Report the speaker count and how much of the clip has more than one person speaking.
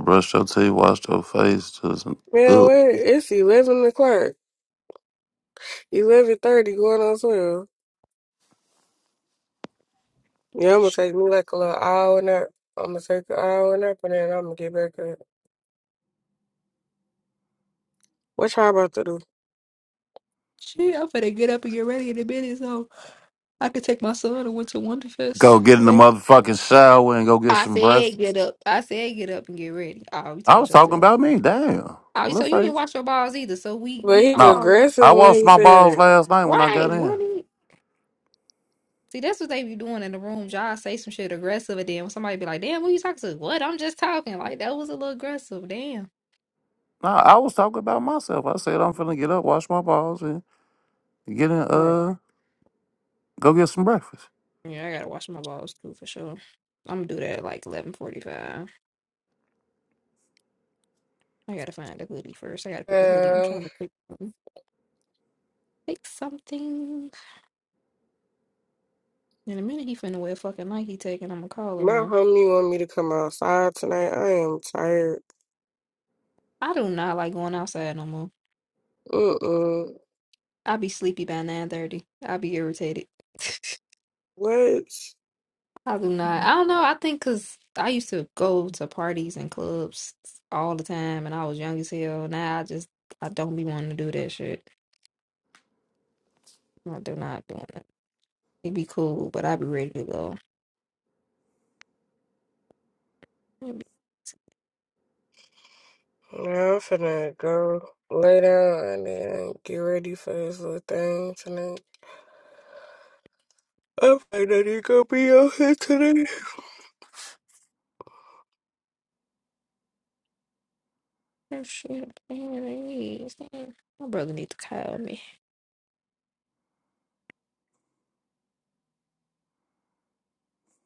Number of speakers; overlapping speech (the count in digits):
3, about 4%